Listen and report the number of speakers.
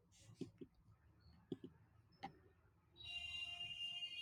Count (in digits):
0